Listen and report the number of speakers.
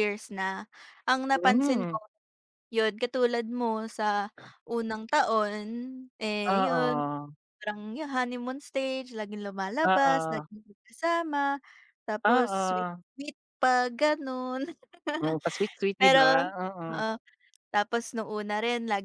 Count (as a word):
two